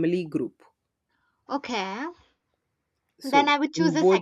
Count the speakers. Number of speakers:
2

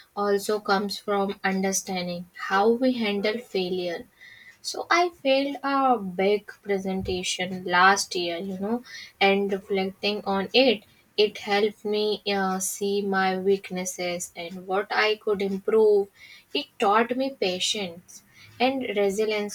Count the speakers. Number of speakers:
1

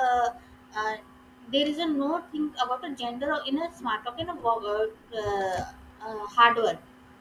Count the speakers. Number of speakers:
1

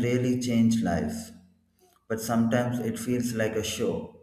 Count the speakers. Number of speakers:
1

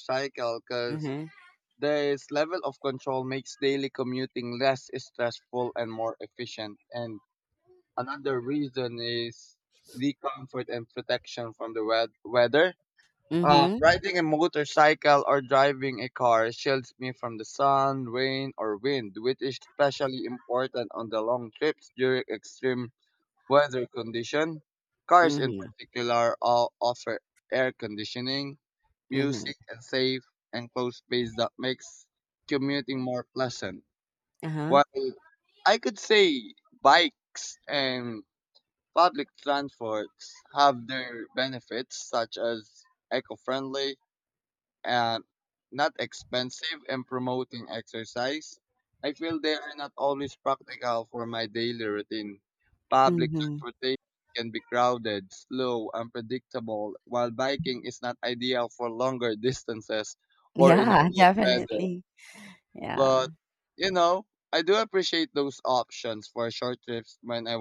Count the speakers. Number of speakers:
2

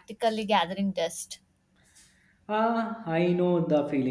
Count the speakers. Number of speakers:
2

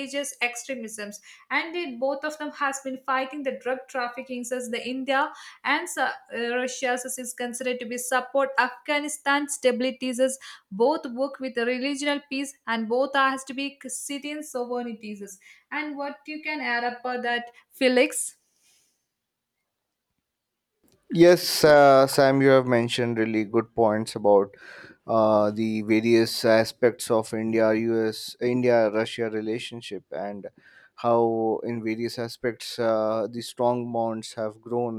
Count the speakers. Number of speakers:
2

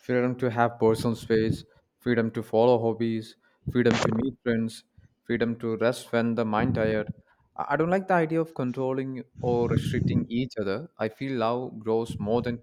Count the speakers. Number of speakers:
1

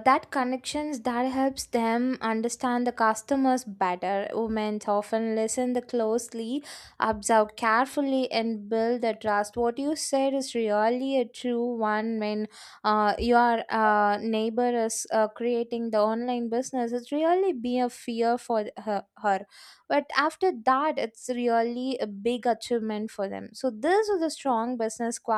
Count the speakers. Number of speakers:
1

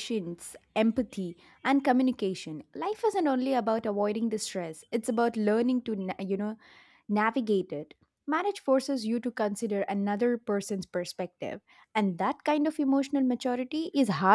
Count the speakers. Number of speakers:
1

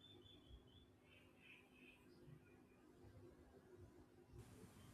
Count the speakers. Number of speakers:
0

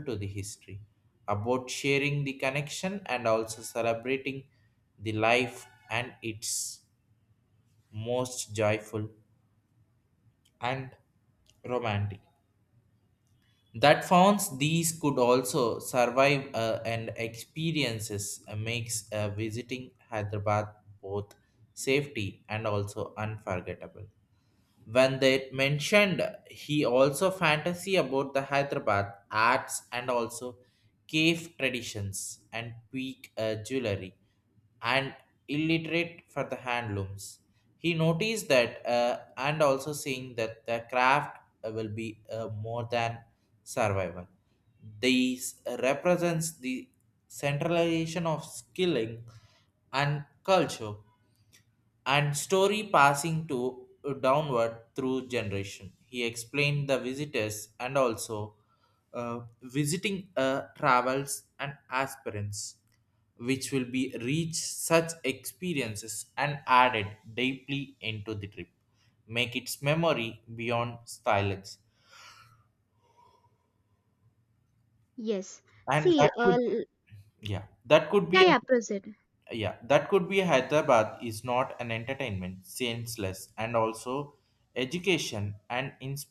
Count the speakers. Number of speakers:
2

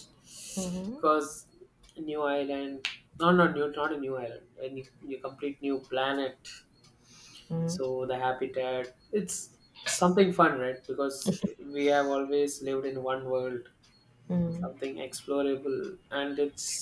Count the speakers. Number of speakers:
2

